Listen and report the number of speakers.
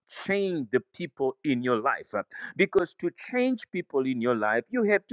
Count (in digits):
1